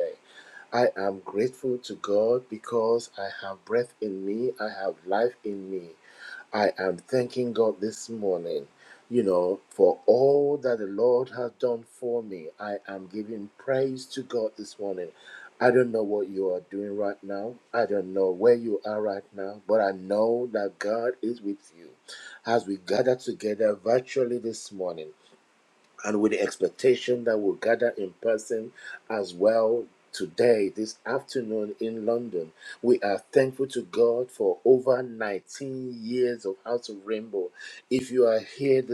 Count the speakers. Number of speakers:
one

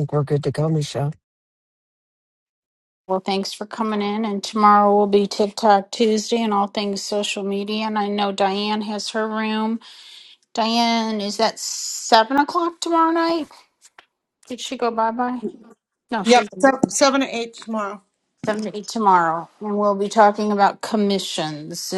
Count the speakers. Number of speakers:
three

